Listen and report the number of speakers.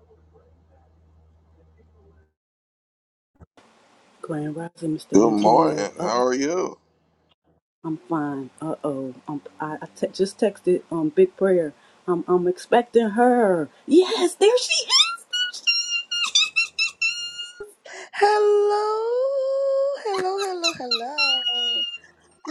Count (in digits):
3